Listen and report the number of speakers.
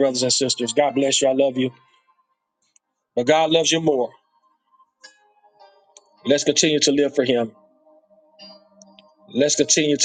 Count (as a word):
one